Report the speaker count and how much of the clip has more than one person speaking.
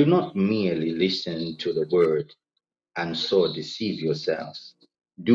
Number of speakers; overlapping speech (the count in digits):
1, no overlap